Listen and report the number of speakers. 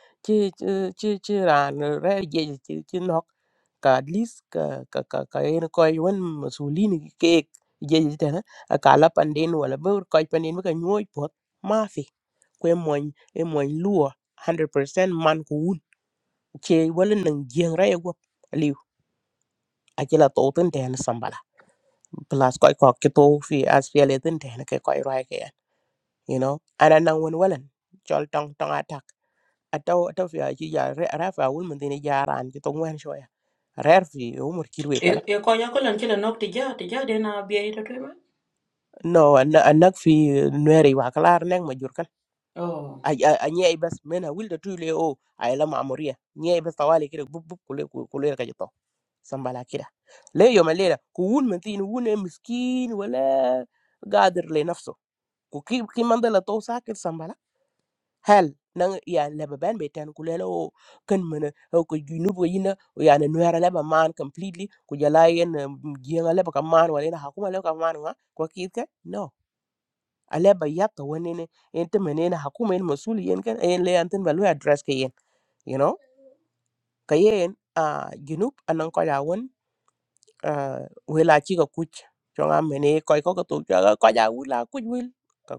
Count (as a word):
two